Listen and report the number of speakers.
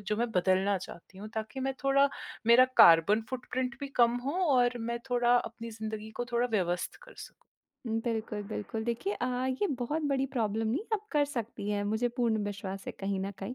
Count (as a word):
two